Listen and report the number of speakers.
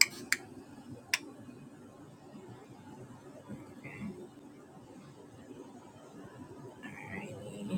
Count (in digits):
0